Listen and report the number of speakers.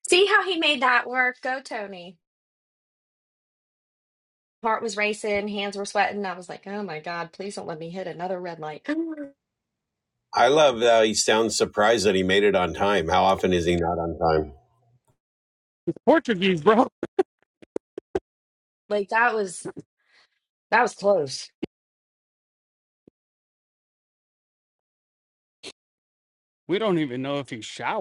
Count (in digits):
3